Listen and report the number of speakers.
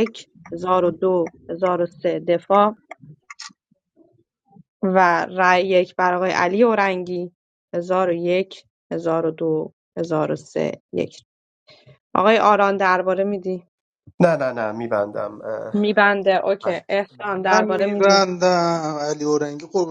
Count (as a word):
three